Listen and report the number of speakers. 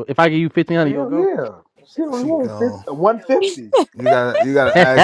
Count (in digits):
3